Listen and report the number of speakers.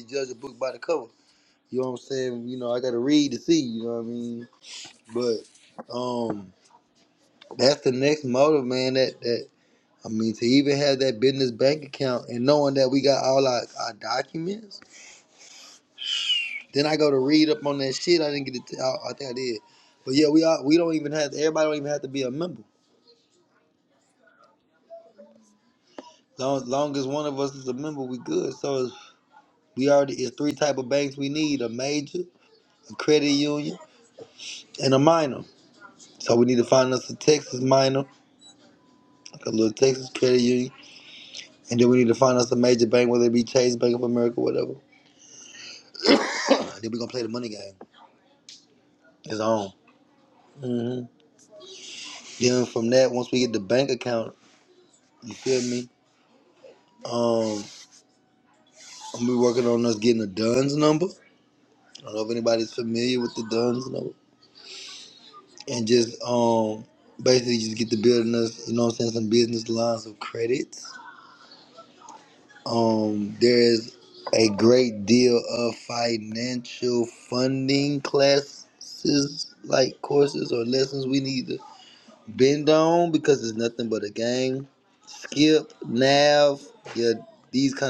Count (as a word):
one